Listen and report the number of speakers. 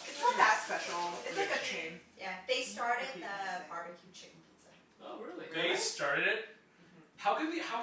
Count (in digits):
4